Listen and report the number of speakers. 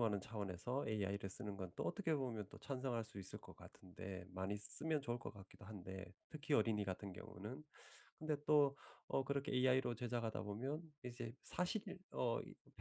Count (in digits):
1